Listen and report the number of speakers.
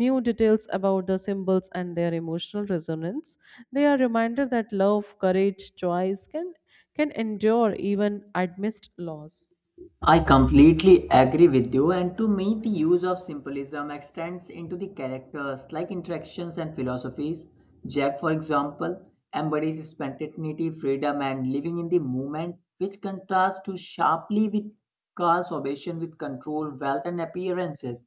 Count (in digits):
2